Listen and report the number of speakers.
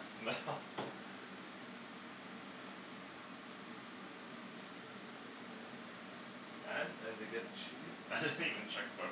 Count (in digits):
2